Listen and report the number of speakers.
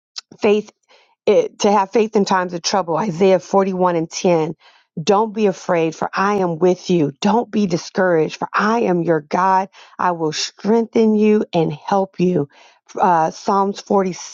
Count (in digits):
1